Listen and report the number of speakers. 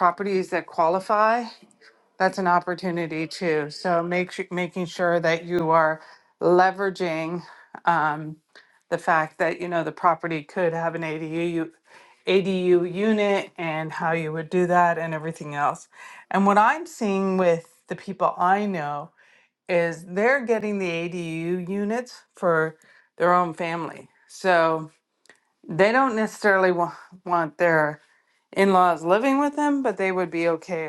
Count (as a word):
one